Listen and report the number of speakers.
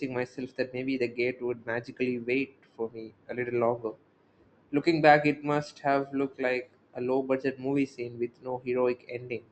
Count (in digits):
1